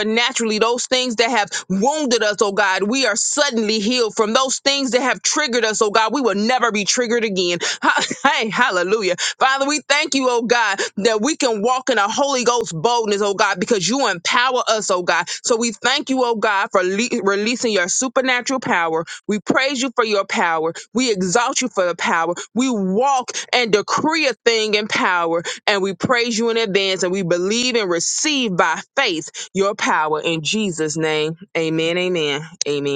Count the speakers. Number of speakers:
1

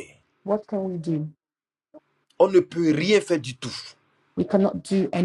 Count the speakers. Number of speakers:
2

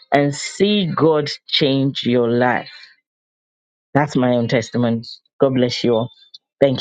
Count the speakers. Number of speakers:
1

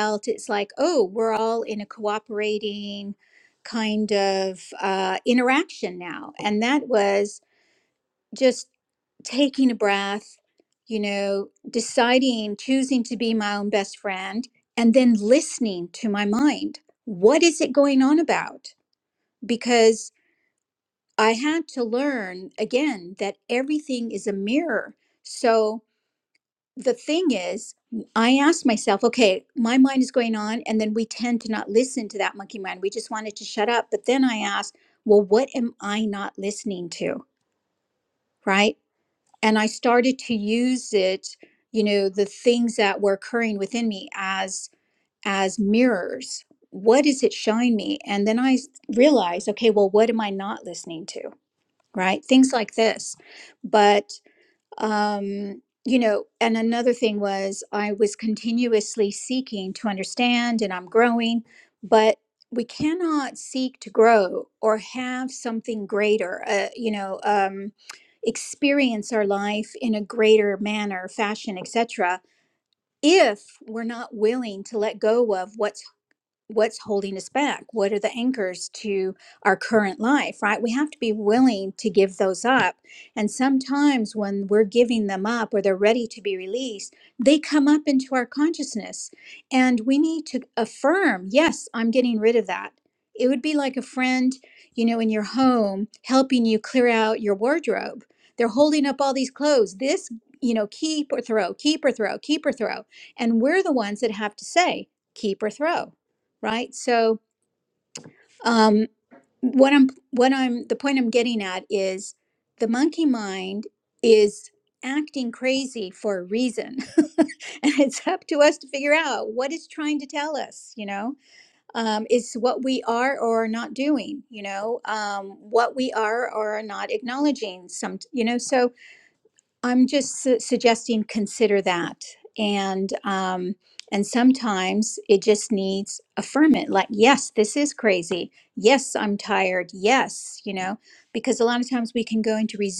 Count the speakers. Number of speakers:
1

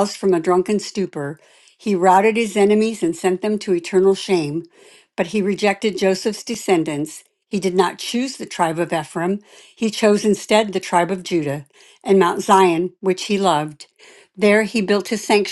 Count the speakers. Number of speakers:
1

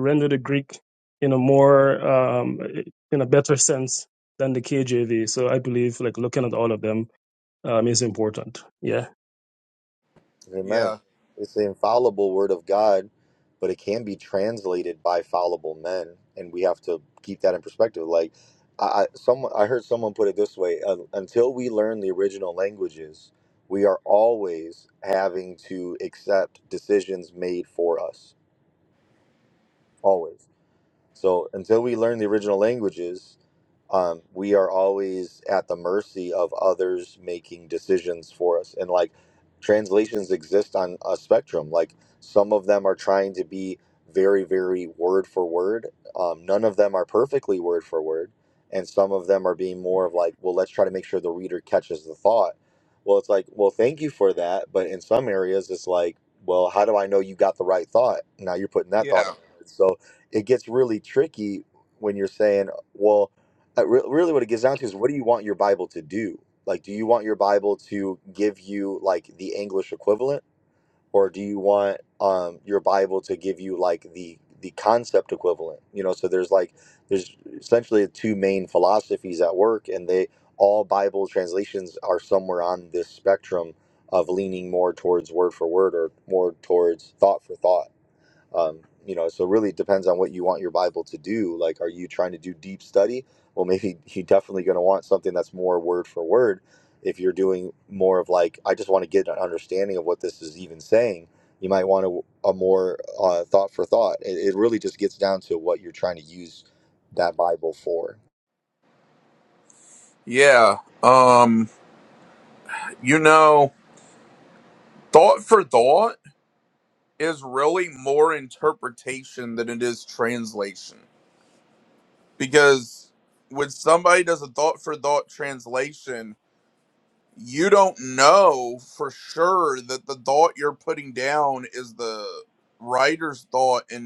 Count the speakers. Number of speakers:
3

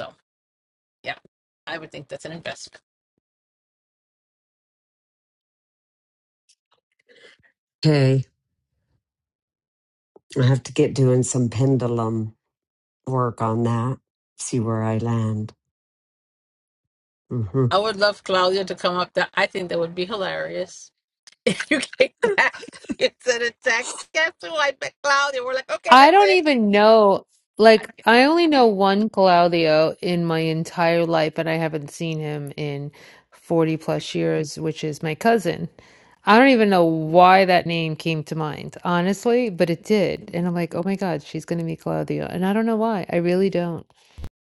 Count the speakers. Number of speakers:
3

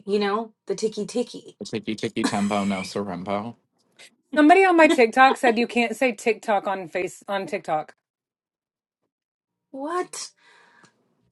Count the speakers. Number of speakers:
3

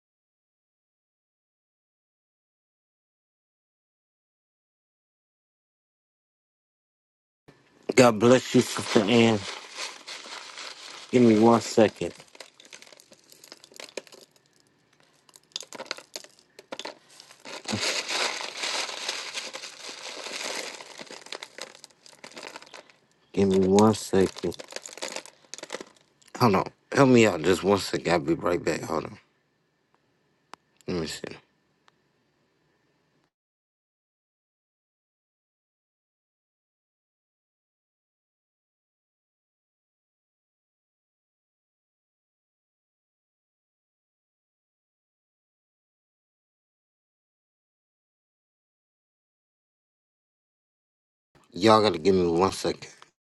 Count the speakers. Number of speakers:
1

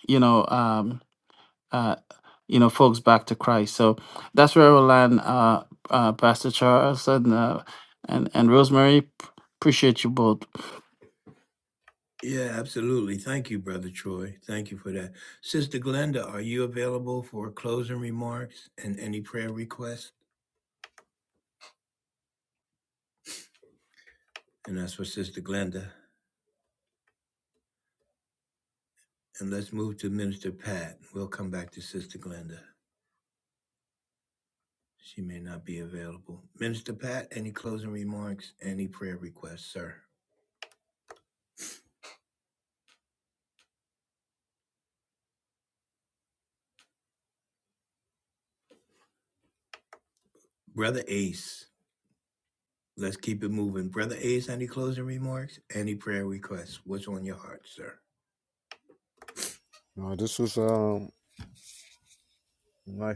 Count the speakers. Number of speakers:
3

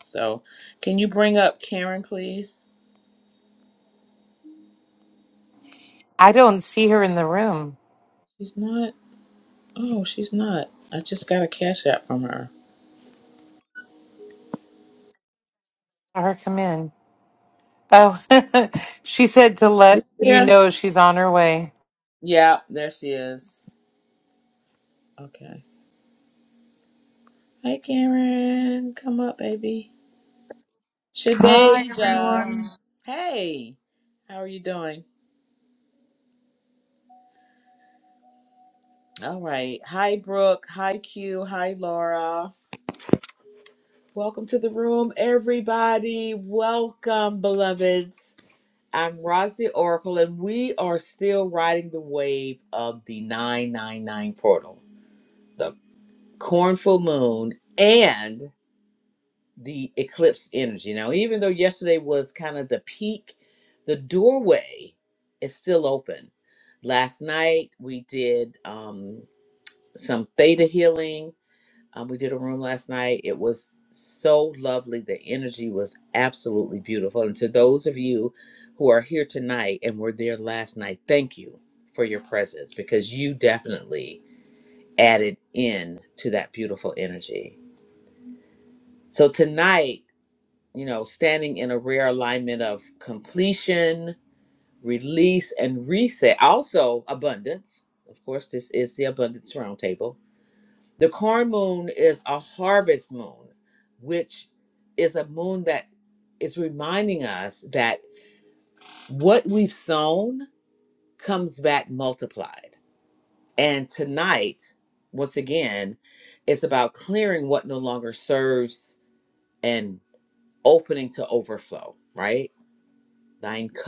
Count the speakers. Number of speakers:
3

